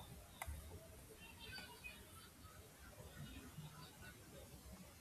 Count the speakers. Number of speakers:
zero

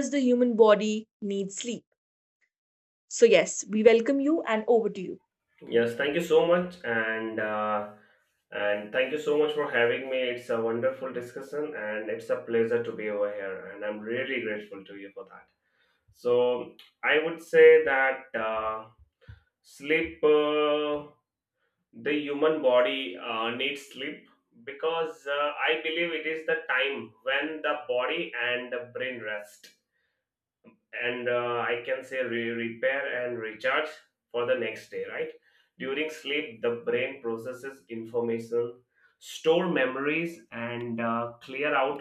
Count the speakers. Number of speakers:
two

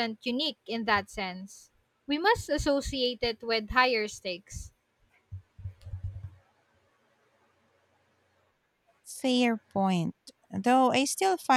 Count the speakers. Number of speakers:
two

